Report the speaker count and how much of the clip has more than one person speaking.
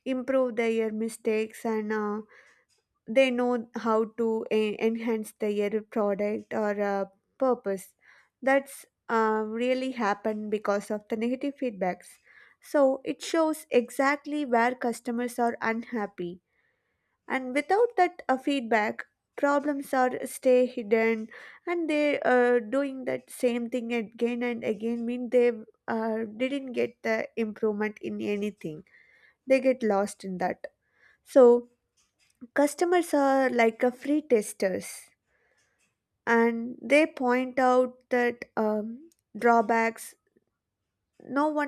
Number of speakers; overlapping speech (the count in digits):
1, no overlap